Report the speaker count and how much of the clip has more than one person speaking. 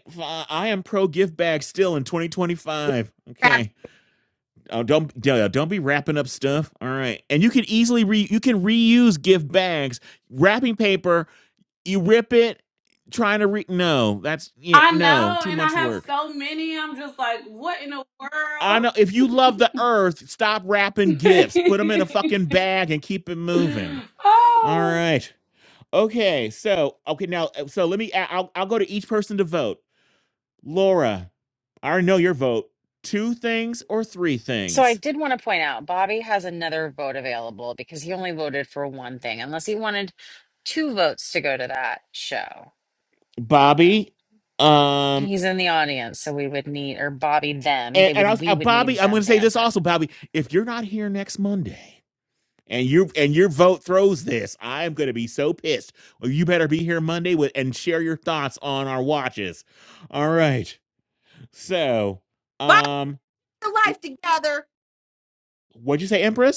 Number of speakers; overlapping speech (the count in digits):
4, about 7%